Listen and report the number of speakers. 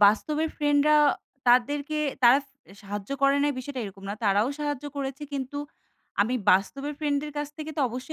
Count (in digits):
1